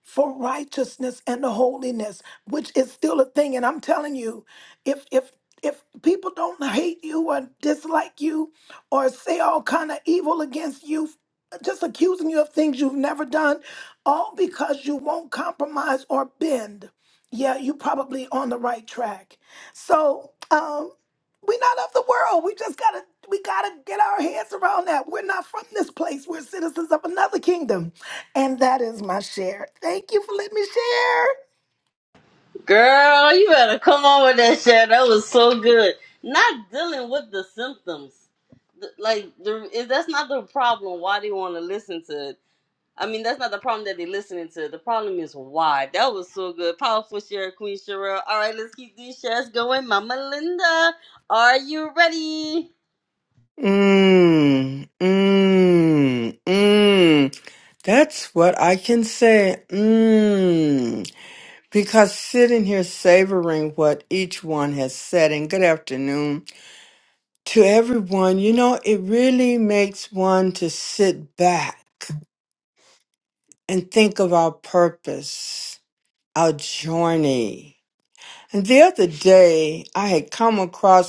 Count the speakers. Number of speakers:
three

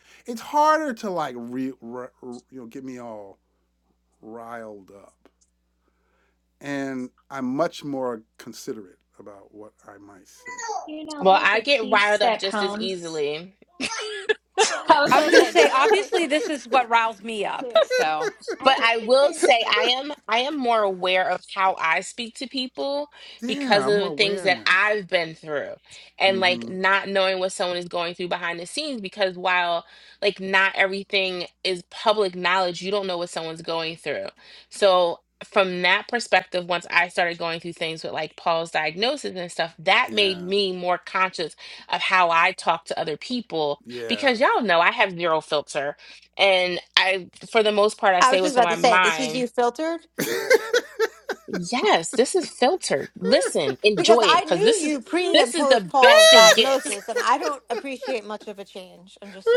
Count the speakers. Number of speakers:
five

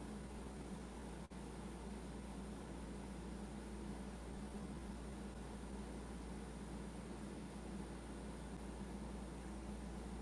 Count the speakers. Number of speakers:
zero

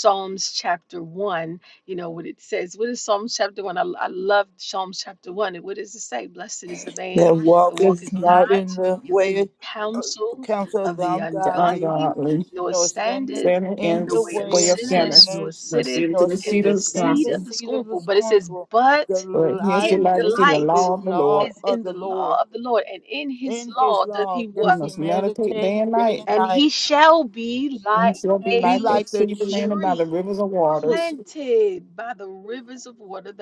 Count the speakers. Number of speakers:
three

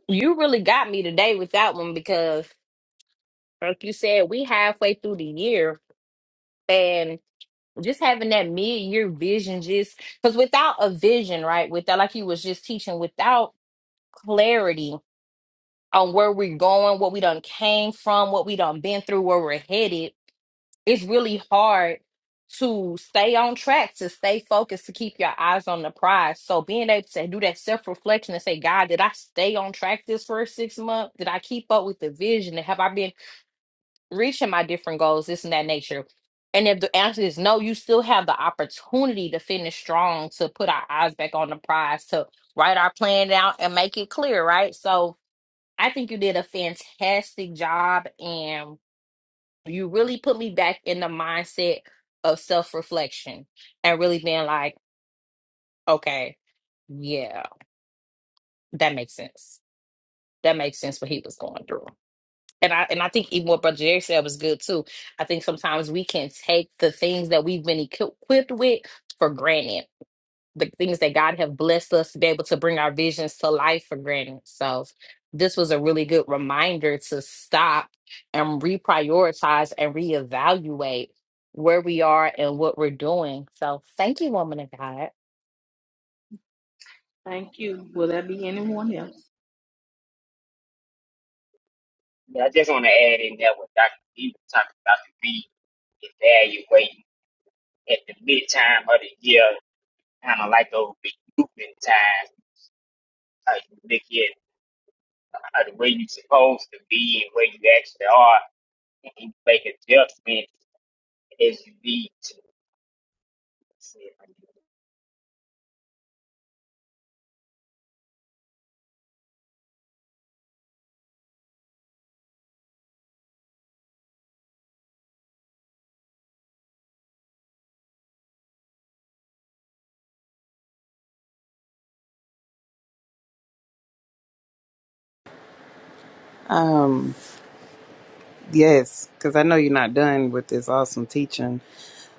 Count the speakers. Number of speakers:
four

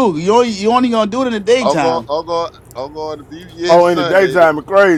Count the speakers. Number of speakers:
three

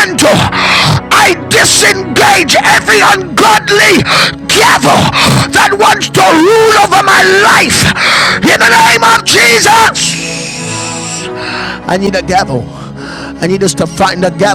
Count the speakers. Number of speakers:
one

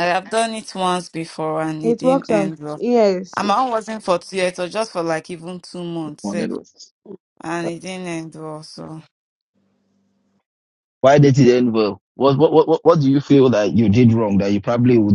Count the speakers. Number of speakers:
three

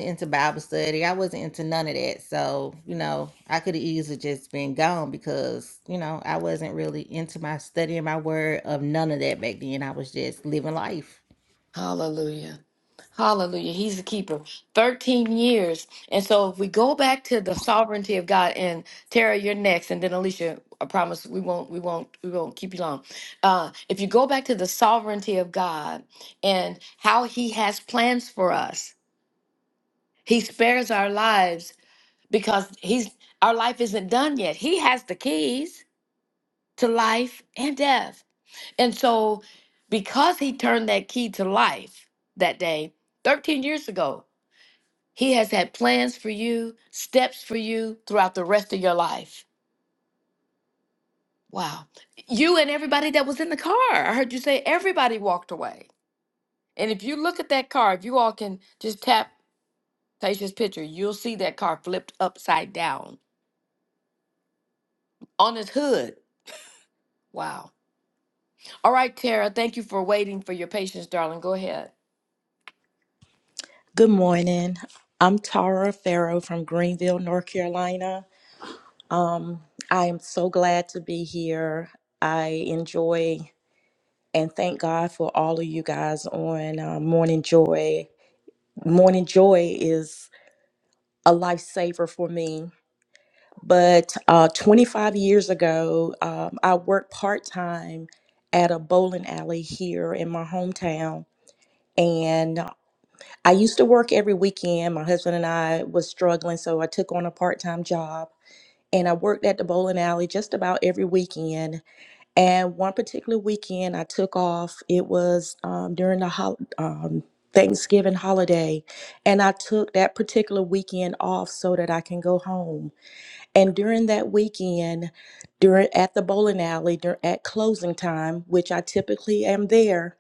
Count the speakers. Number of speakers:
three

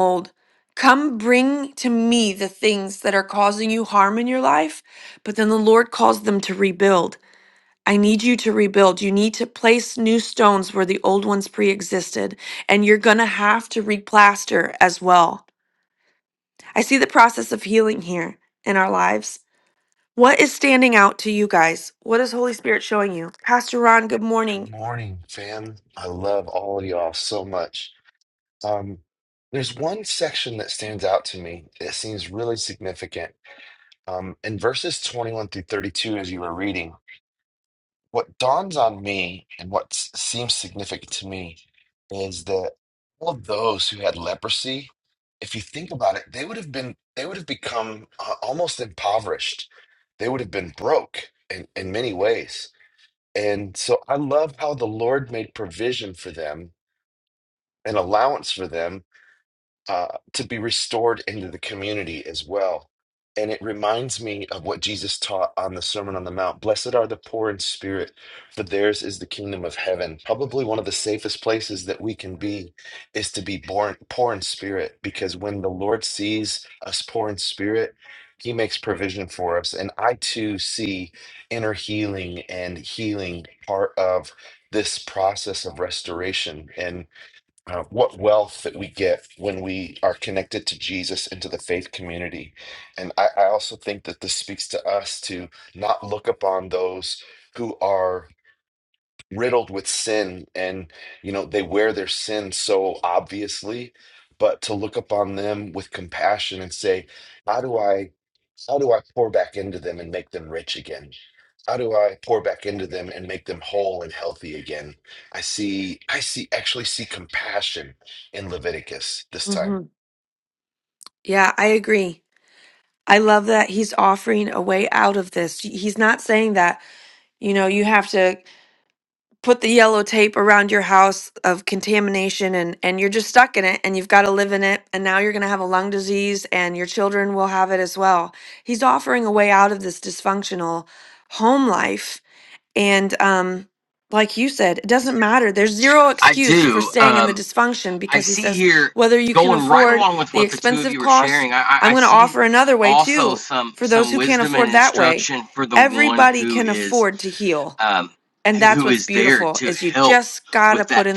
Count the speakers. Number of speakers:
three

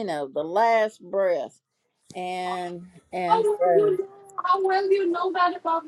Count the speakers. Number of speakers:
two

